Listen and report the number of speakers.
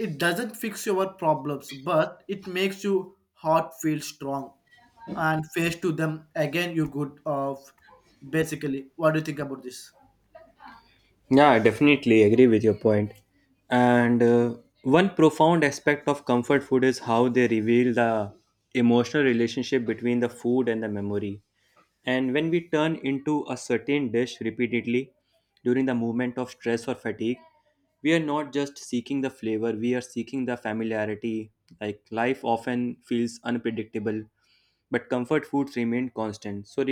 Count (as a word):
two